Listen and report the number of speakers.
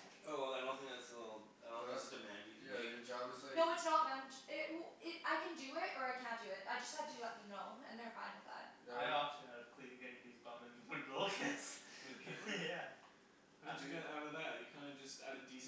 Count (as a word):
four